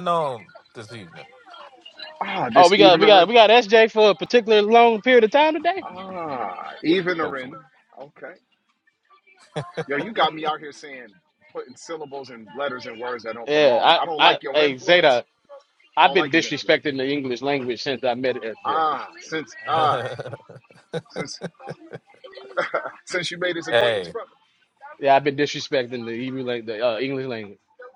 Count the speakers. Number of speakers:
three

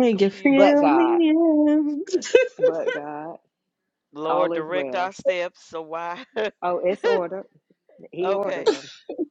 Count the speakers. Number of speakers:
three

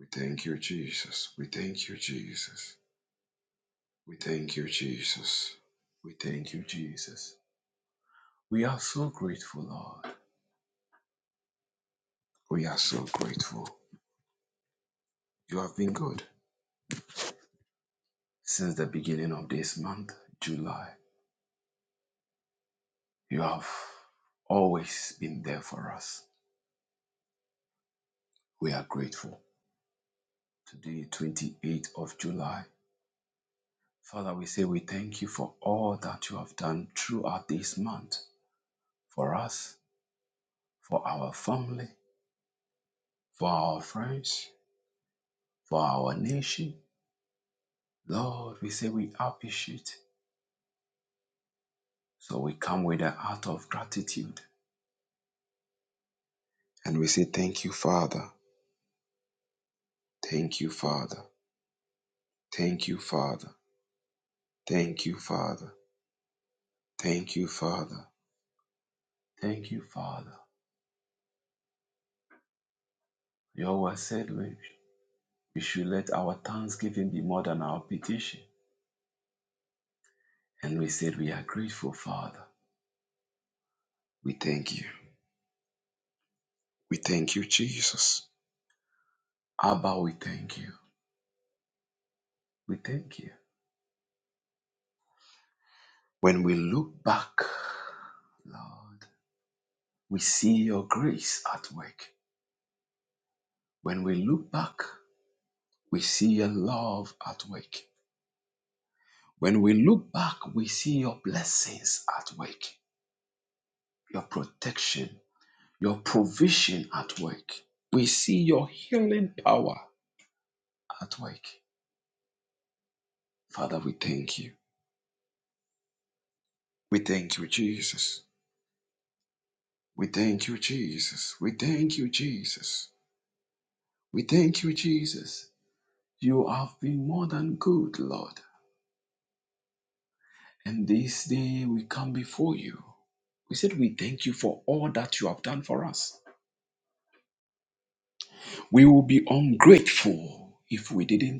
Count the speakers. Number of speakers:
one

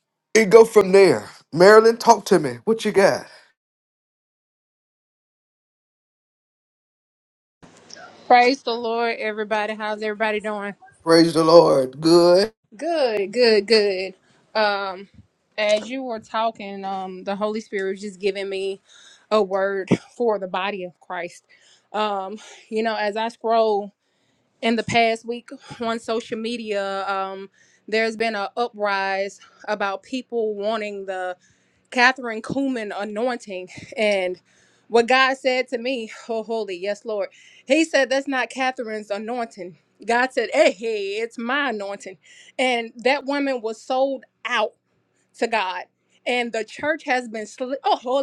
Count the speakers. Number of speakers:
two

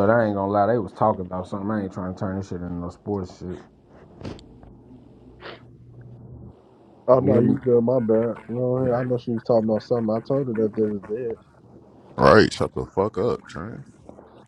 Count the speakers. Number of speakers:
three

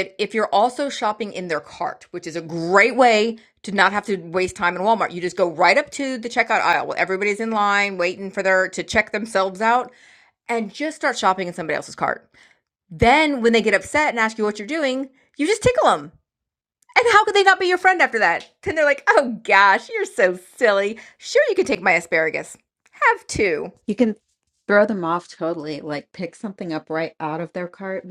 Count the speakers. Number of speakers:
two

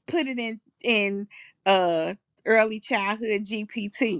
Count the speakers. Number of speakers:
one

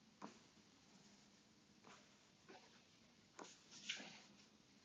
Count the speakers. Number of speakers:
zero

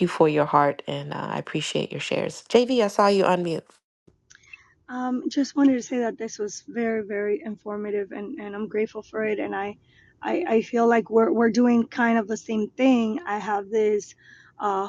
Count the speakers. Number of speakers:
two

